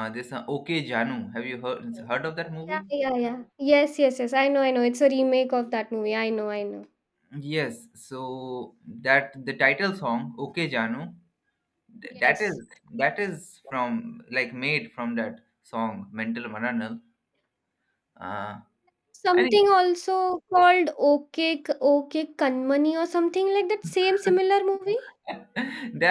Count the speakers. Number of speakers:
2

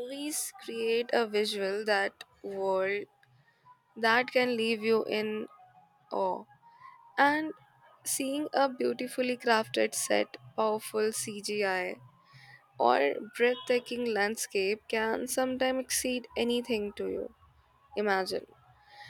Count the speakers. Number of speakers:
1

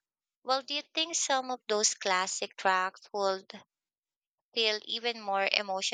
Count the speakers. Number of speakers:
1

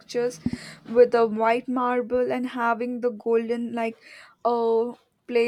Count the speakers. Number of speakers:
1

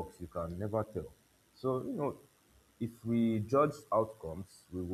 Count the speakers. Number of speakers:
1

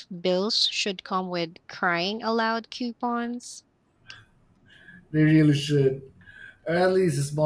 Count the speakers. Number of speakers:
2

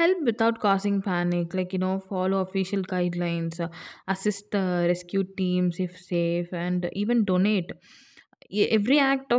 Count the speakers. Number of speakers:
1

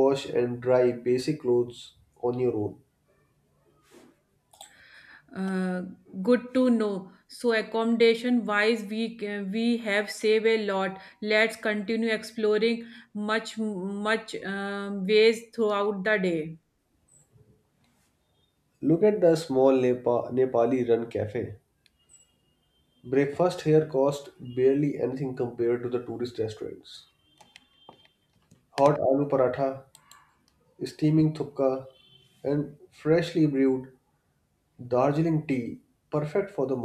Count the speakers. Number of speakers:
2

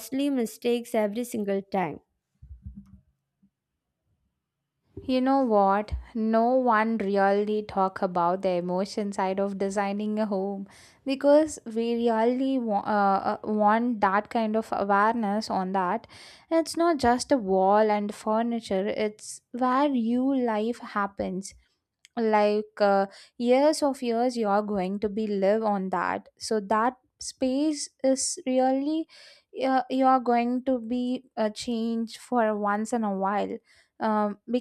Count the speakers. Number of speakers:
2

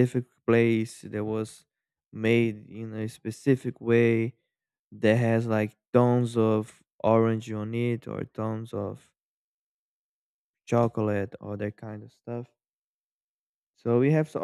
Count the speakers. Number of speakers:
1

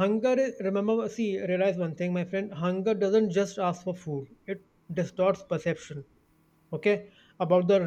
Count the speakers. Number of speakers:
1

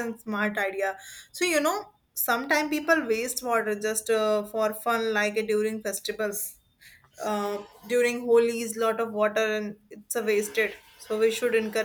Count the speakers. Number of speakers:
1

